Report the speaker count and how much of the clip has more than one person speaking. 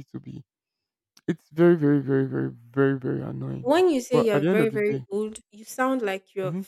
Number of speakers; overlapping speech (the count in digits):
2, about 17%